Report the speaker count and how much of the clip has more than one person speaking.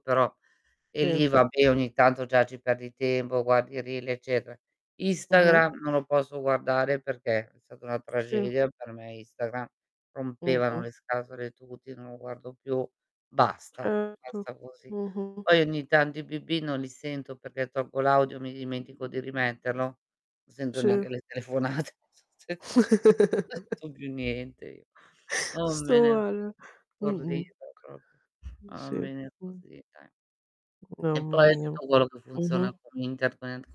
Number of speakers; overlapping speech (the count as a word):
two, about 9%